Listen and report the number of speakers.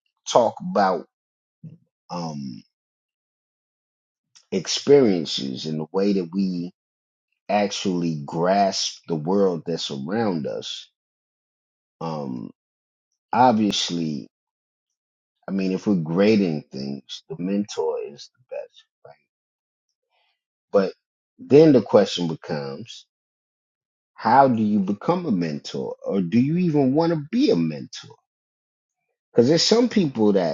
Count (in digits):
1